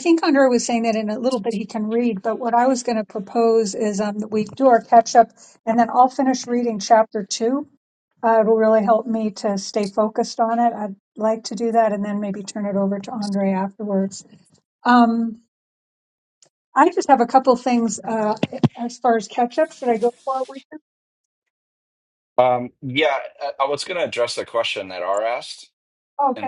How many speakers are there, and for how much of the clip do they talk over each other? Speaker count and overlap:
2, about 1%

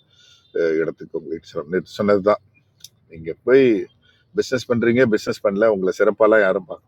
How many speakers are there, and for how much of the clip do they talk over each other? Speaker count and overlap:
1, no overlap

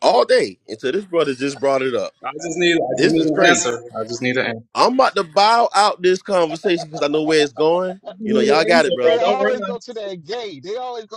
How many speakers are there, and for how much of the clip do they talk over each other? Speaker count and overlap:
3, about 18%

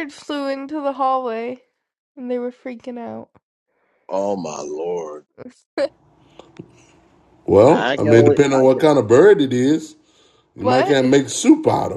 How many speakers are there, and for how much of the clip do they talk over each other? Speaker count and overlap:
3, about 13%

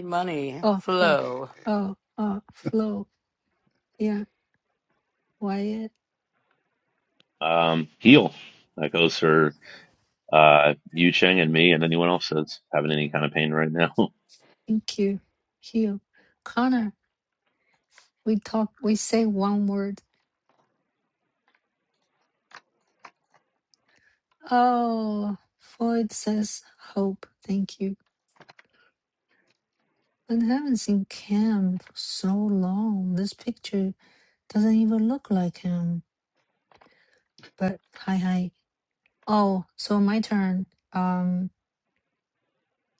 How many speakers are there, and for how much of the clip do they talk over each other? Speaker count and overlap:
3, about 1%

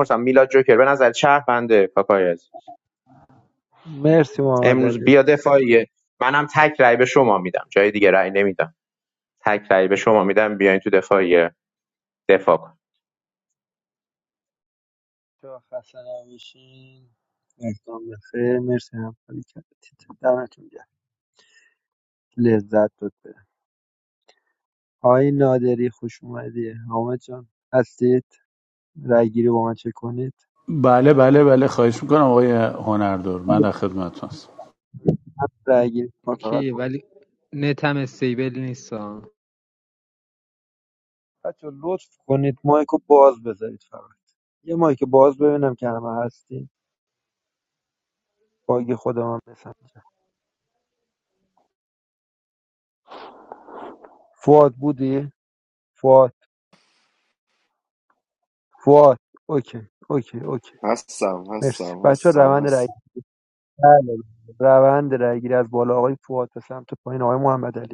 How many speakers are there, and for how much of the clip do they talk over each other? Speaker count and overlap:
5, about 3%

